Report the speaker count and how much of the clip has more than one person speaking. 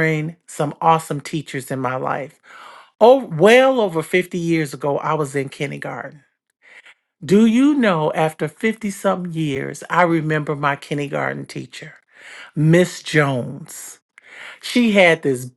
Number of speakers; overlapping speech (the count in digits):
1, no overlap